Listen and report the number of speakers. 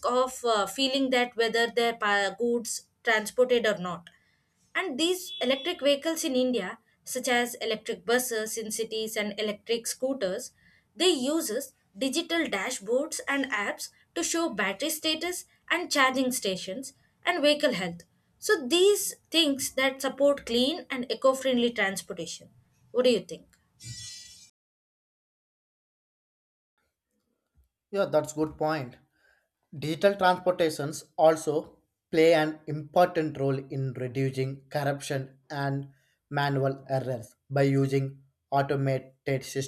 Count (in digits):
2